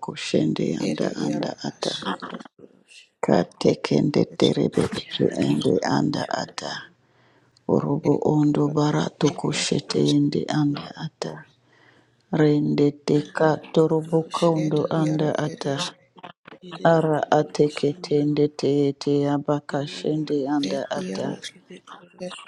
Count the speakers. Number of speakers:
3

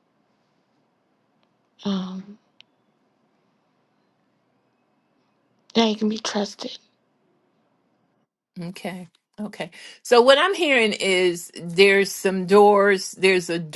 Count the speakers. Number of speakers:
2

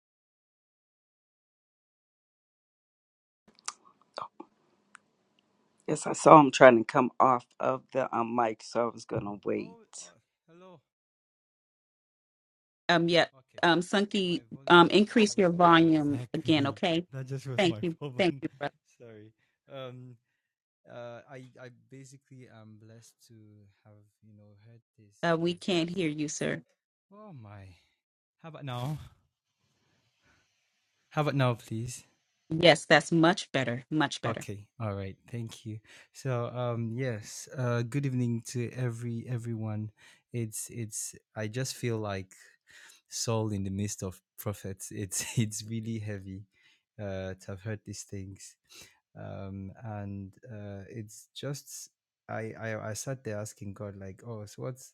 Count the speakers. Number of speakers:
3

